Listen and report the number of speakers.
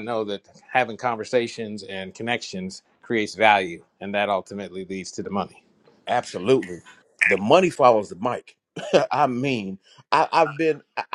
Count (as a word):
two